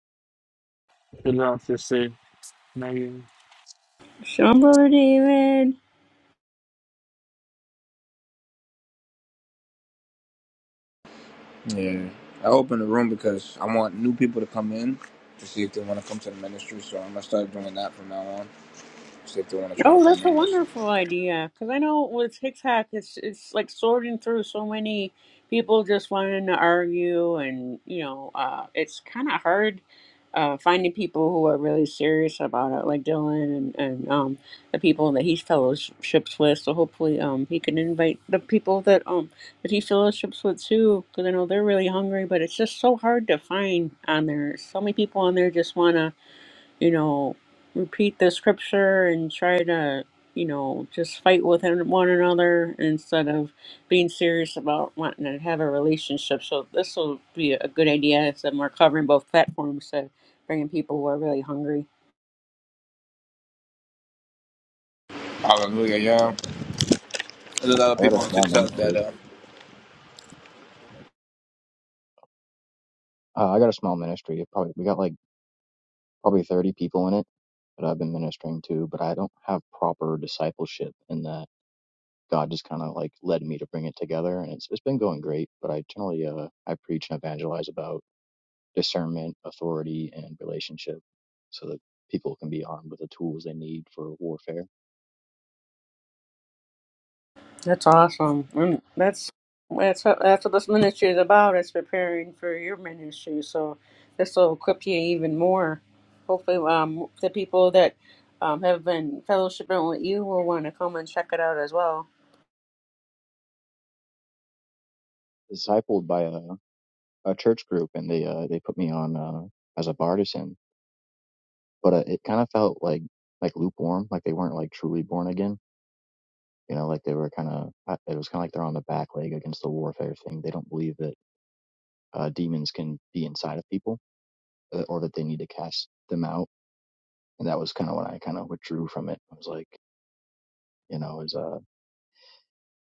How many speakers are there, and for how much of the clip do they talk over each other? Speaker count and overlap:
4, about 2%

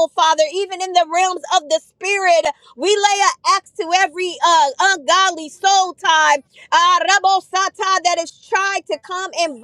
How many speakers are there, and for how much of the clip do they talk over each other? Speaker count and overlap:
1, no overlap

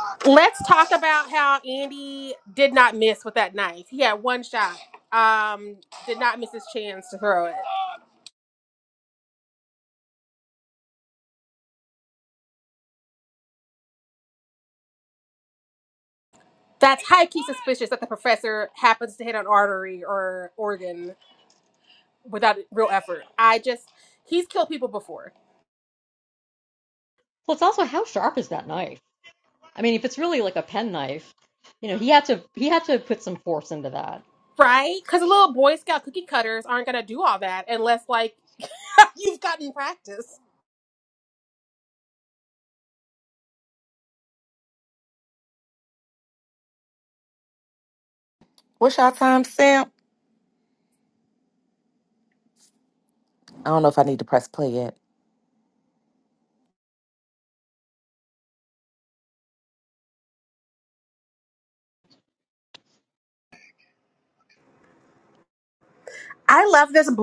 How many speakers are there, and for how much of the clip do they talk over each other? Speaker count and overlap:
3, no overlap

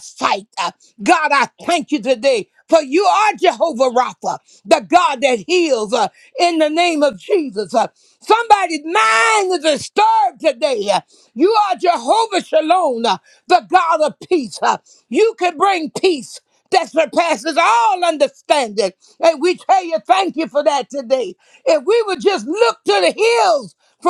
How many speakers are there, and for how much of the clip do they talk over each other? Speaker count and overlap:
1, no overlap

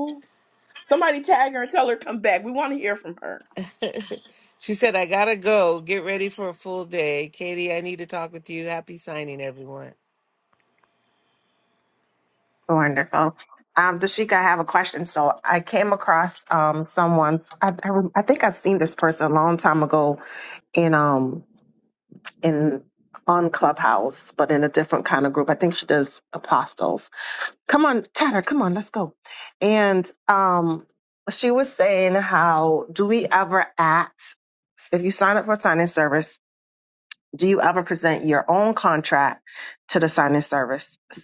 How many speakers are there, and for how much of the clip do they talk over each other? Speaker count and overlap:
3, no overlap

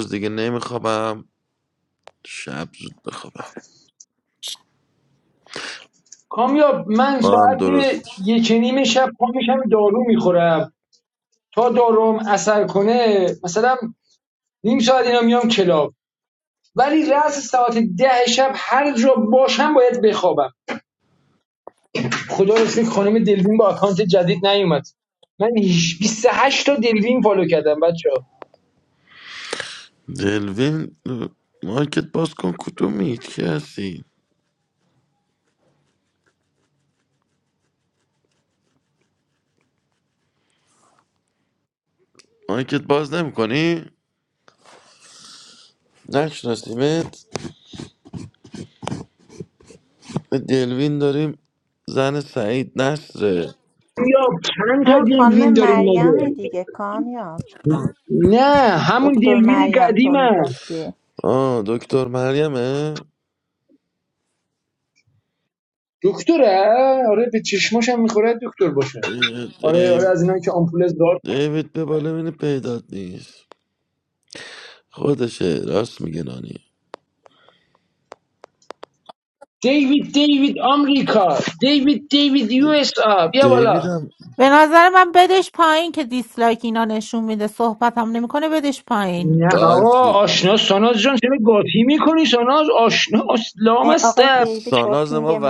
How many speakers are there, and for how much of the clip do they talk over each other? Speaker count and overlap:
4, about 7%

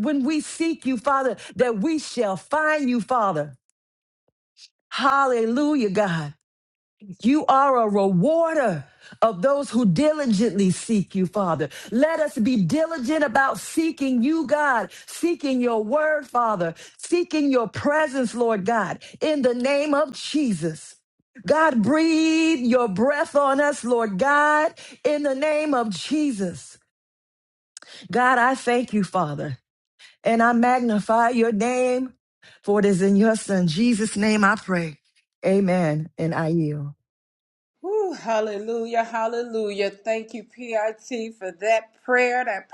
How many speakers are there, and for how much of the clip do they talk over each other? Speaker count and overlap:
2, no overlap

